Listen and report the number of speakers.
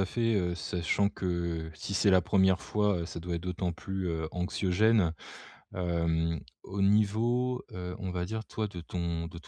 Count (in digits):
1